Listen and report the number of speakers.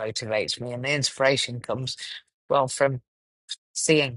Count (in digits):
1